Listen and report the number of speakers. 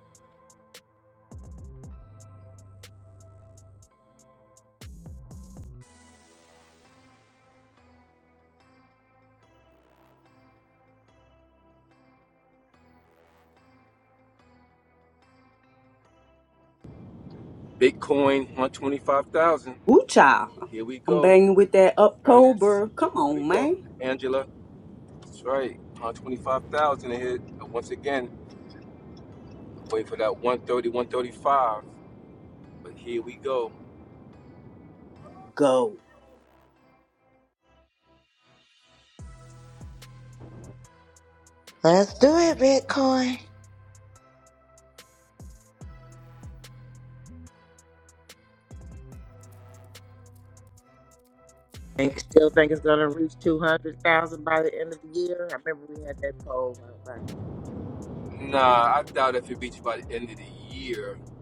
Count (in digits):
4